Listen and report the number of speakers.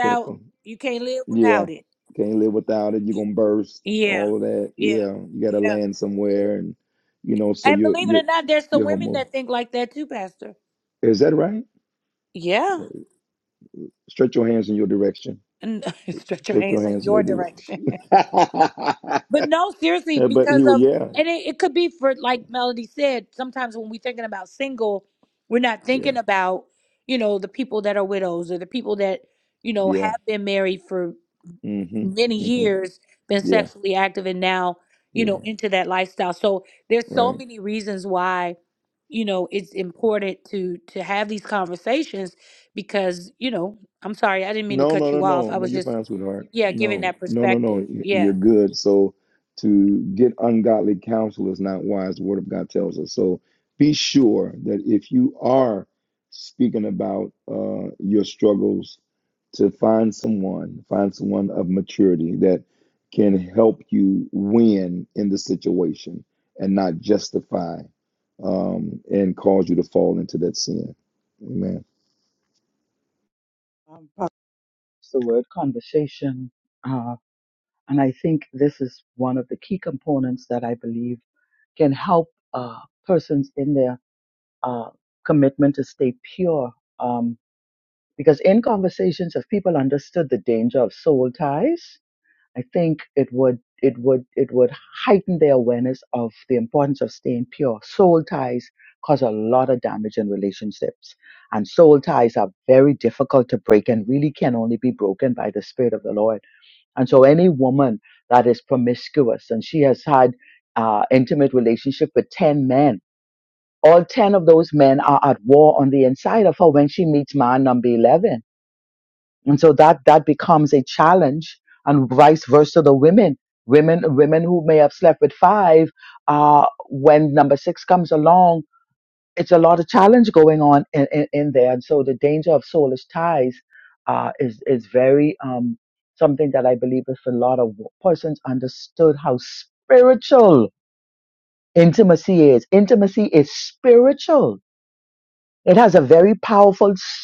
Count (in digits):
3